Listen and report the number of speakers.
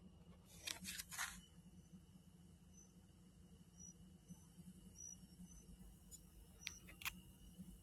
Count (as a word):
zero